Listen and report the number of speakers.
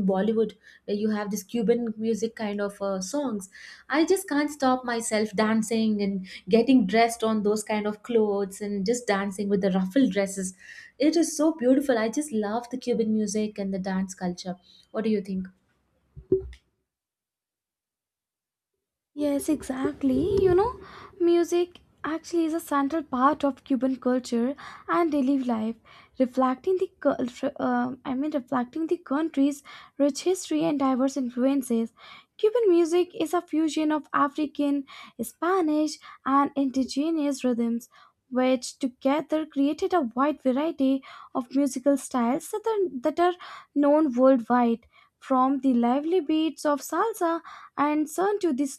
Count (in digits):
2